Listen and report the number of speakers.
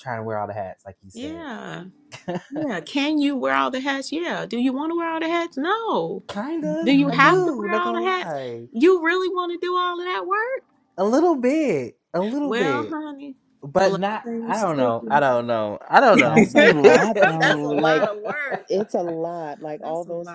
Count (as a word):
three